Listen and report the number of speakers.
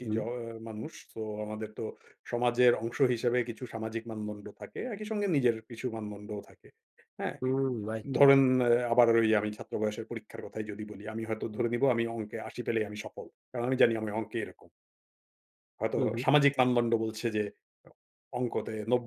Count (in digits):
2